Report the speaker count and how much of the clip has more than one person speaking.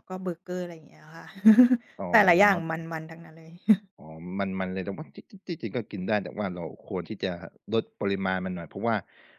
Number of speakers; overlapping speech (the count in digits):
2, about 2%